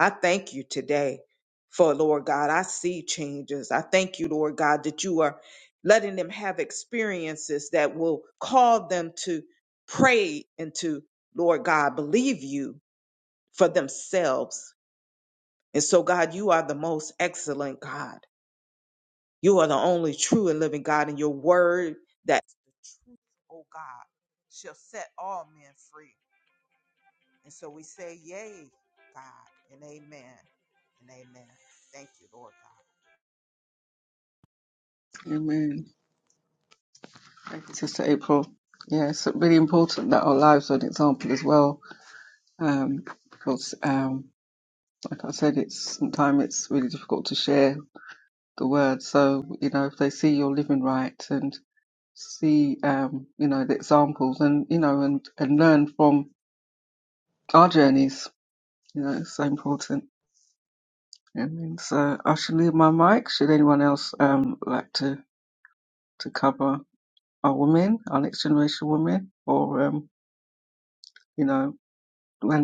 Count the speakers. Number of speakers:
2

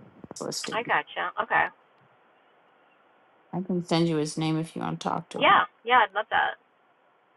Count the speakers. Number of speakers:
2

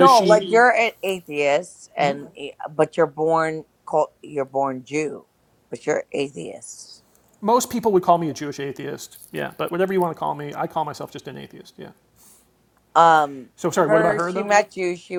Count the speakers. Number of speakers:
2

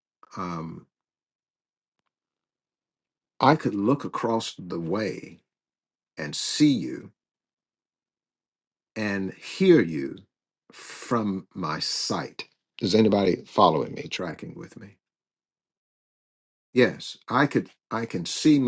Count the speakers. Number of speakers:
1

